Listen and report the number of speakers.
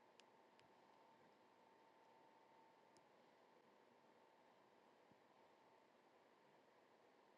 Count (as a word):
zero